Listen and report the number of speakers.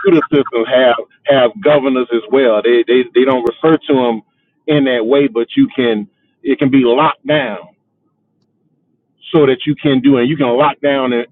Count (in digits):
1